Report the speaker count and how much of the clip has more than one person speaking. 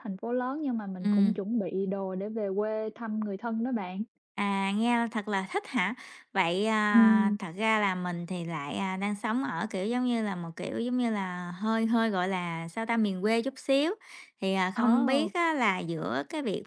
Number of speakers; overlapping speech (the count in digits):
2, about 8%